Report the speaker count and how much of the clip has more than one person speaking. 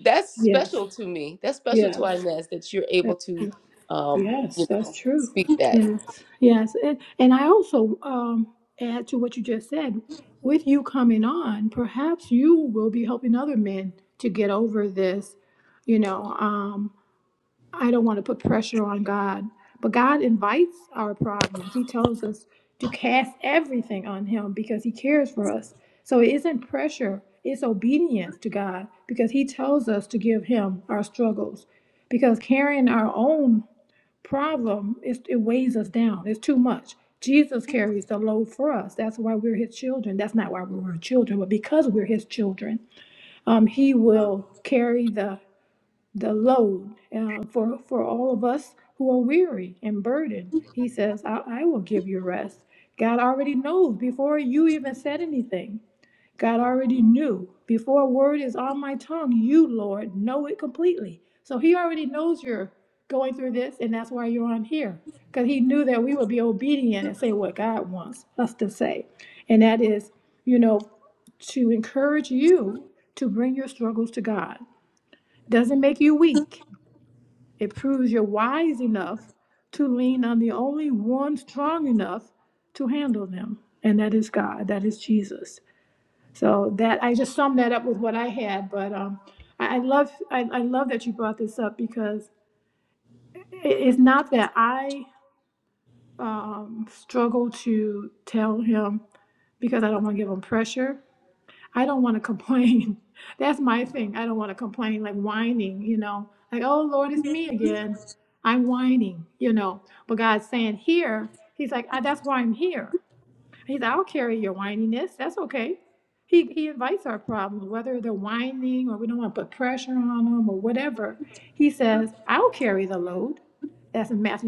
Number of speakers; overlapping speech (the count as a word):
two, about 2%